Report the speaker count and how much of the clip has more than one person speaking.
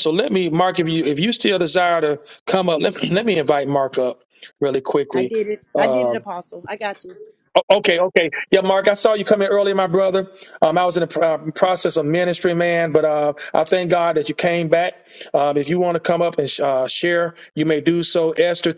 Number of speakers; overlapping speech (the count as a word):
two, about 3%